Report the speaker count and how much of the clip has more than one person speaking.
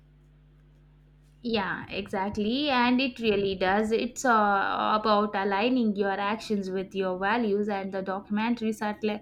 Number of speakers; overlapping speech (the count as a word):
one, no overlap